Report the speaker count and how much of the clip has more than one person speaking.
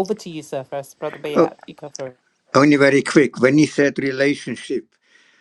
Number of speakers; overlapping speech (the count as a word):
two, about 4%